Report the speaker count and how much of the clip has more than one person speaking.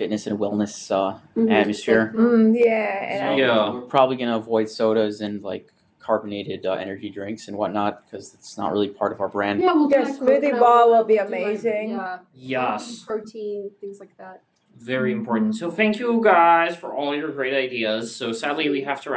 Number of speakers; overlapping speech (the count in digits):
4, about 22%